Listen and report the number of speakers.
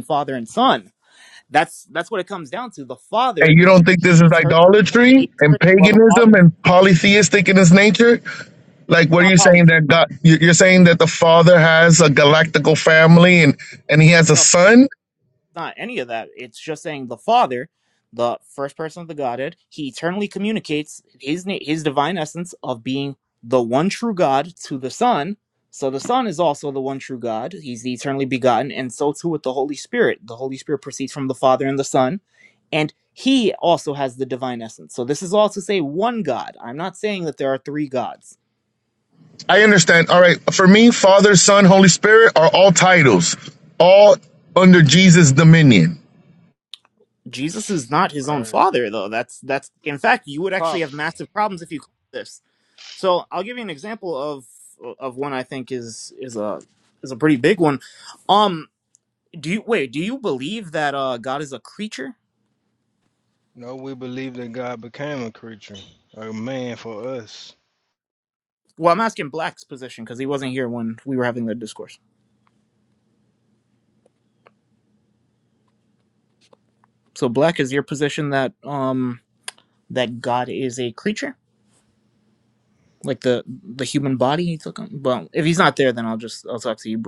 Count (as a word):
three